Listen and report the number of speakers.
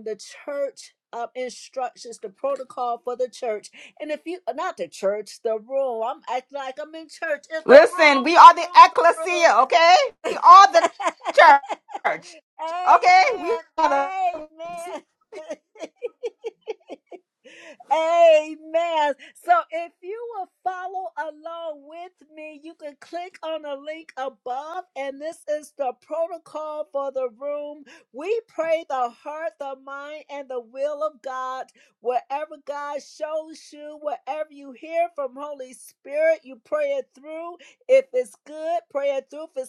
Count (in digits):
2